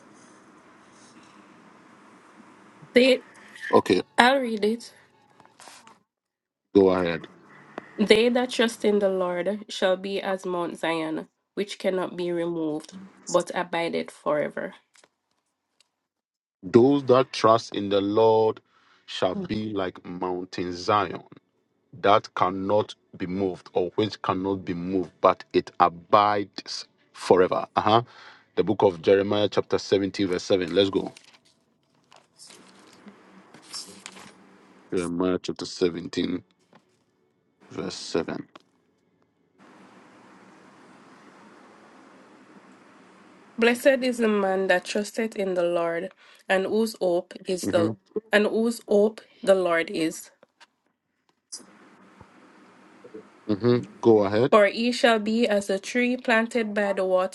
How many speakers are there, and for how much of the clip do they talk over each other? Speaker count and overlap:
2, about 1%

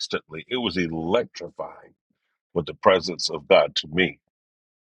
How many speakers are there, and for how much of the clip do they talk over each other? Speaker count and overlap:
1, no overlap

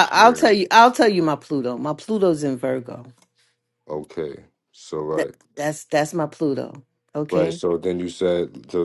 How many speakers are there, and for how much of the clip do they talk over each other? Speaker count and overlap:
2, about 8%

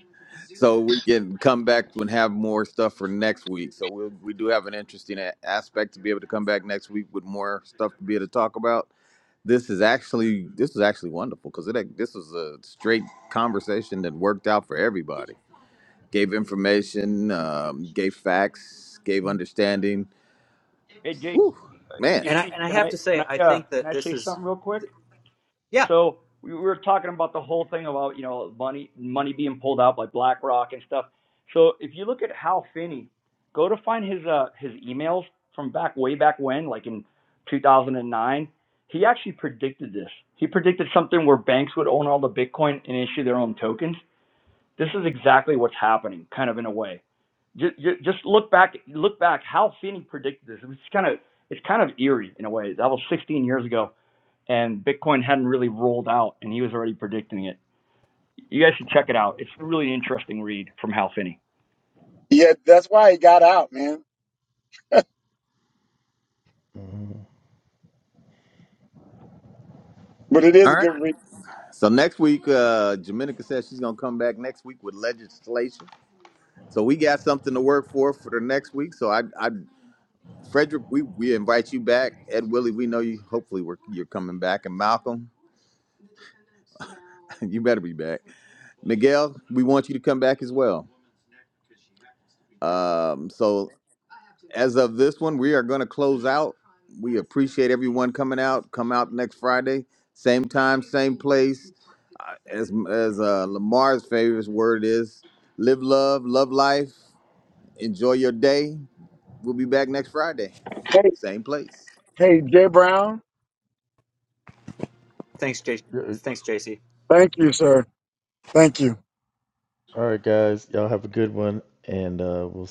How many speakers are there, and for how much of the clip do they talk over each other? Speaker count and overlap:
5, about 2%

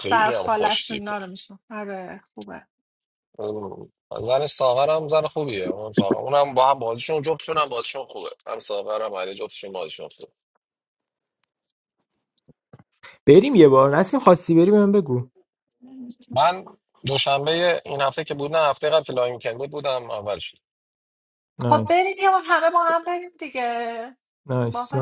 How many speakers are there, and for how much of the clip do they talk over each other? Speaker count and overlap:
3, about 6%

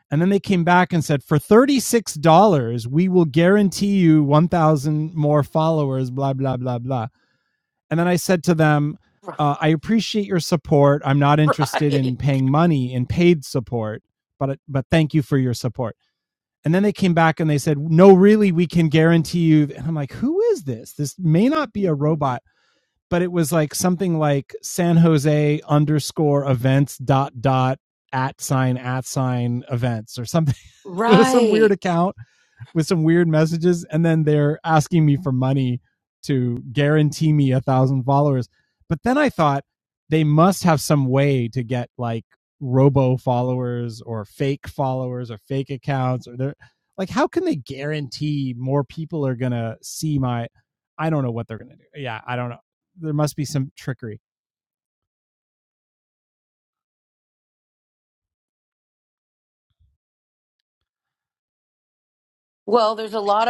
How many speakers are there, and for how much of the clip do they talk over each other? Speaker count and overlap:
2, about 2%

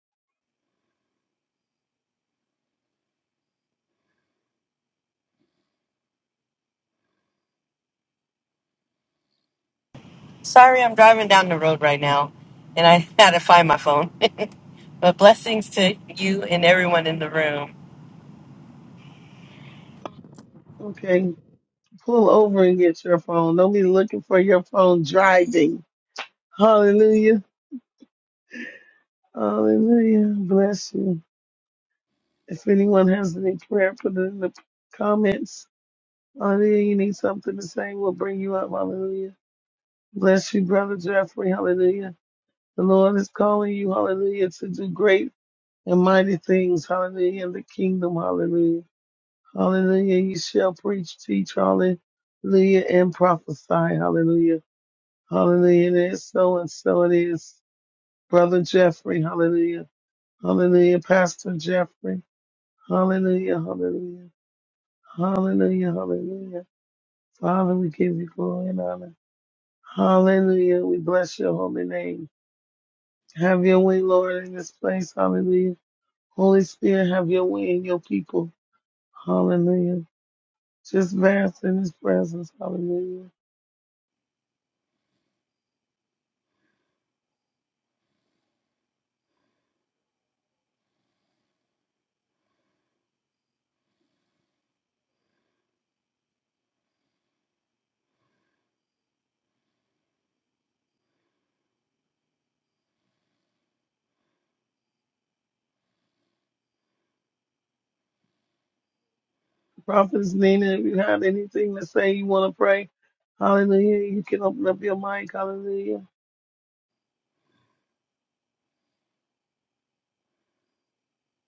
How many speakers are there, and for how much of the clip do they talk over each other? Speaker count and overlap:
2, no overlap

